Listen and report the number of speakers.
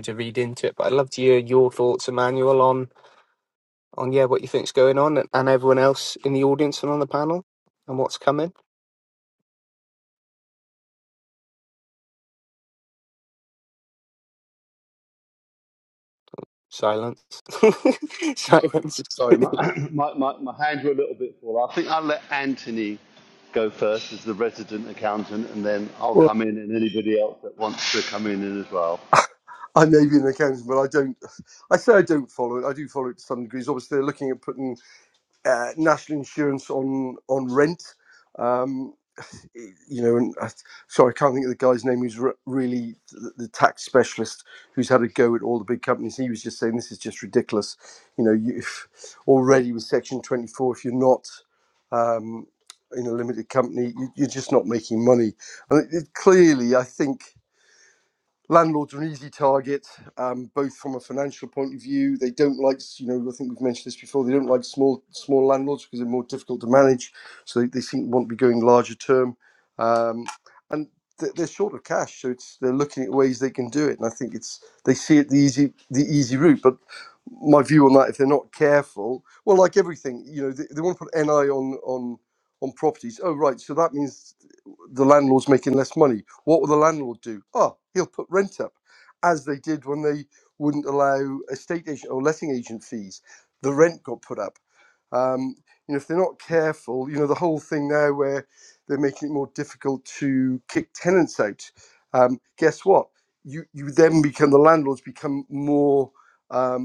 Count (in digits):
3